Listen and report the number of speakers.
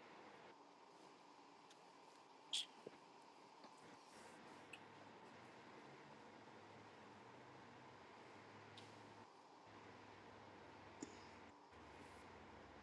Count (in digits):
0